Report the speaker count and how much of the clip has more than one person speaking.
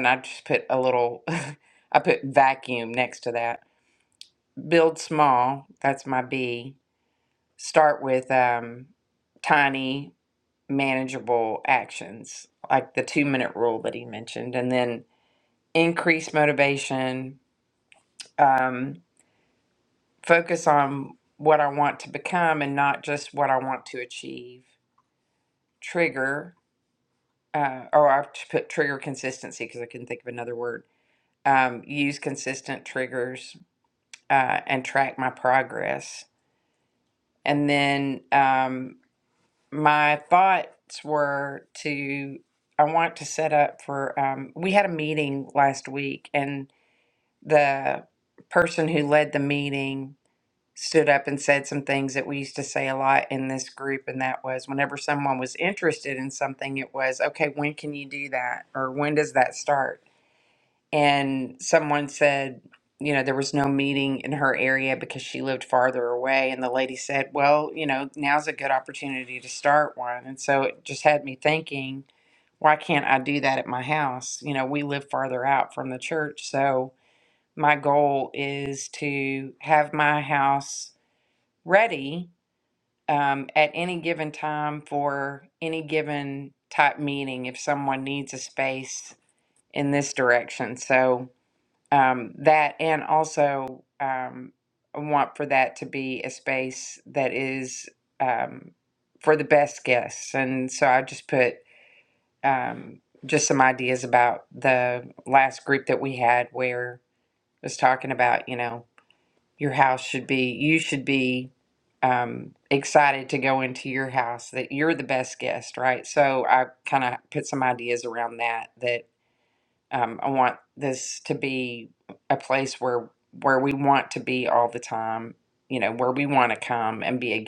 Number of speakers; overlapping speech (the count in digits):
1, no overlap